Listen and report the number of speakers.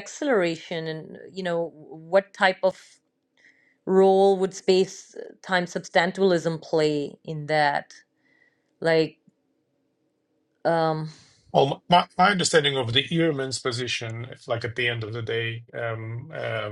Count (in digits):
2